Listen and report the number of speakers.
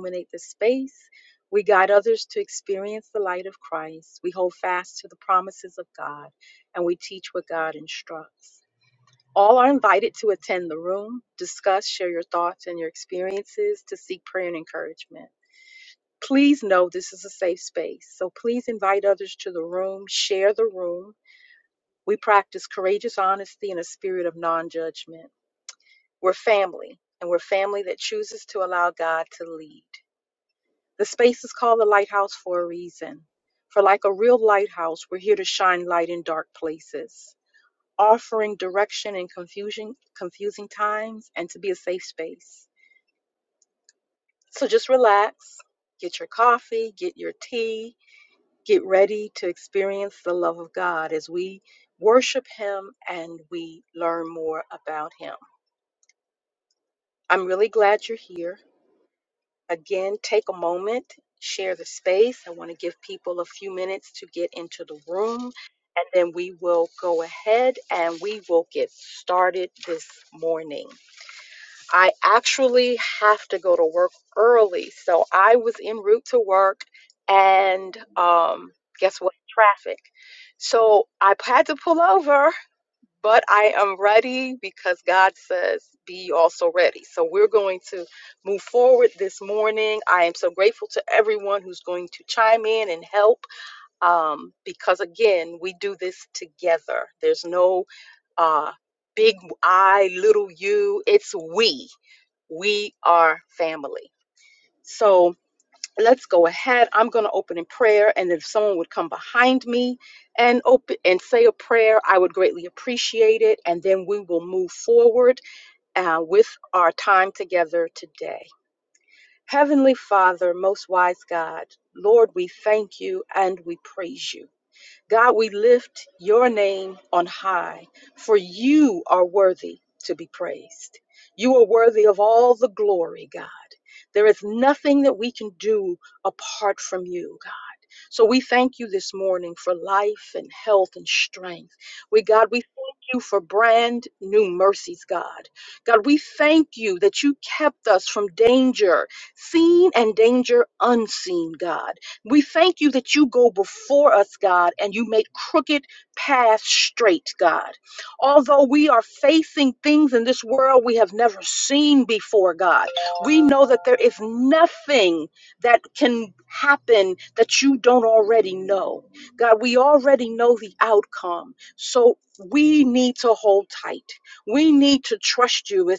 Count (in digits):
1